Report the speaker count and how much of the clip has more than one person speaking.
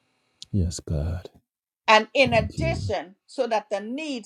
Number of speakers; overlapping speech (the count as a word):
two, about 15%